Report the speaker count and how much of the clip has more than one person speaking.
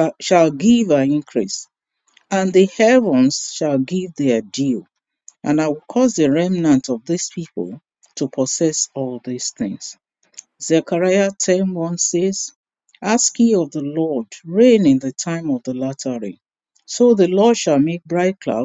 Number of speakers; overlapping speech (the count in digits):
1, no overlap